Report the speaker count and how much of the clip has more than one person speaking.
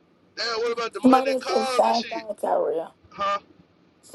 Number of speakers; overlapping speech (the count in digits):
2, about 29%